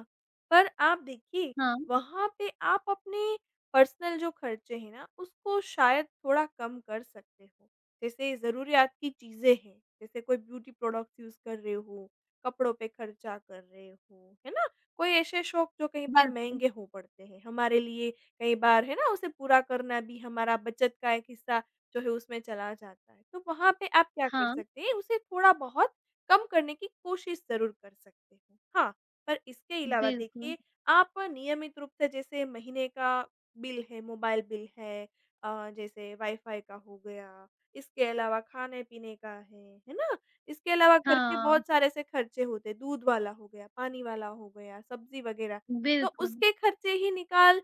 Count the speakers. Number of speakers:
2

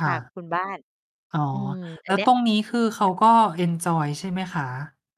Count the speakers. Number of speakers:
2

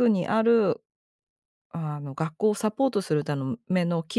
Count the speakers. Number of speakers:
1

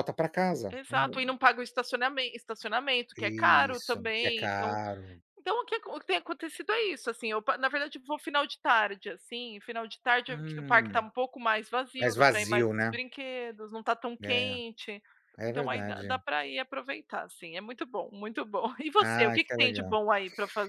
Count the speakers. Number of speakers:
2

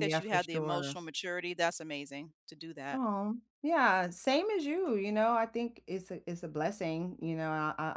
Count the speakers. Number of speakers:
2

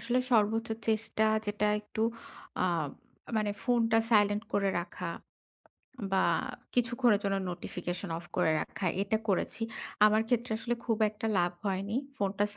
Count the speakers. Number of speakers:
1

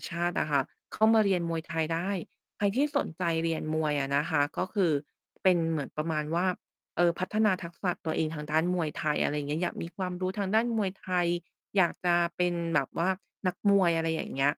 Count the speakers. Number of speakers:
1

